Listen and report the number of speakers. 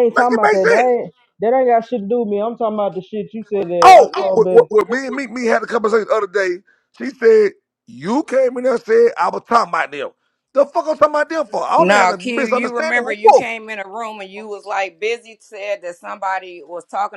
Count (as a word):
three